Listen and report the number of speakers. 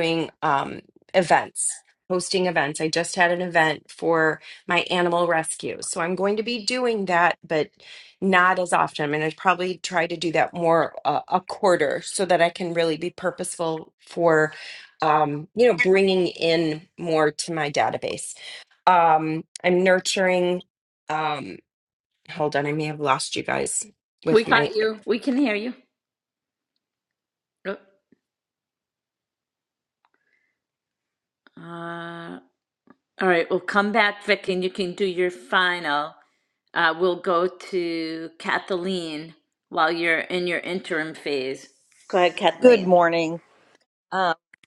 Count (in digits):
3